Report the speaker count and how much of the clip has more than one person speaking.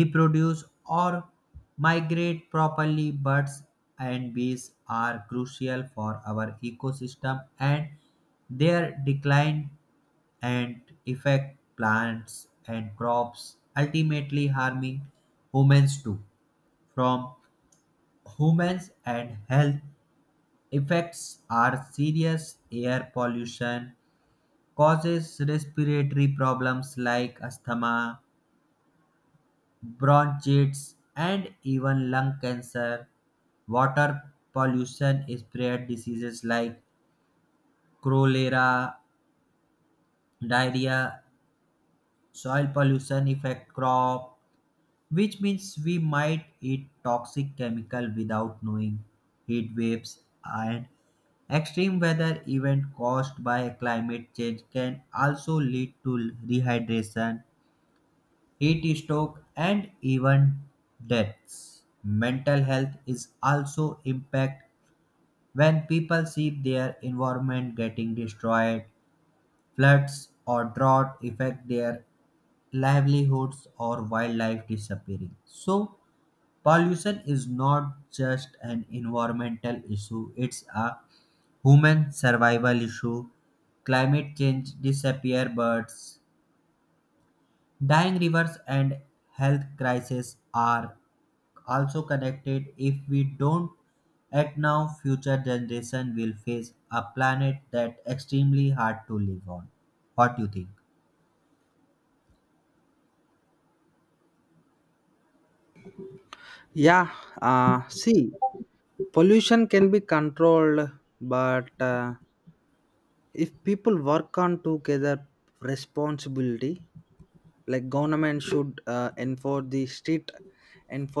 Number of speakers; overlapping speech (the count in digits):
2, no overlap